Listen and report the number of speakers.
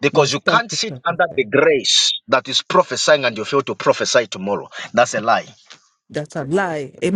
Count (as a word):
two